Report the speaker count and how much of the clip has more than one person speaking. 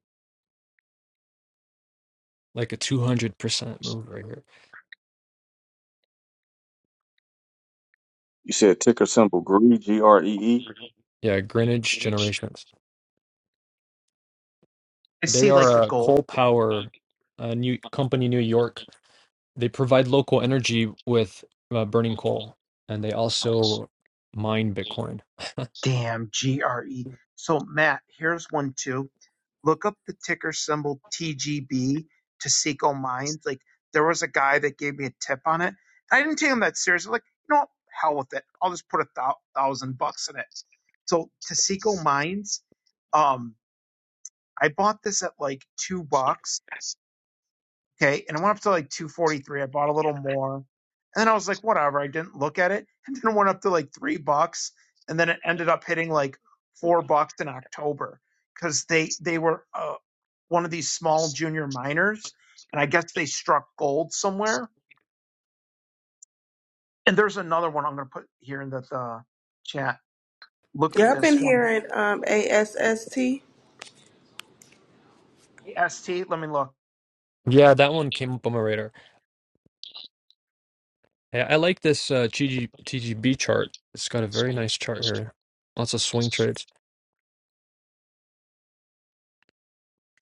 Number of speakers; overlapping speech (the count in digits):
4, about 2%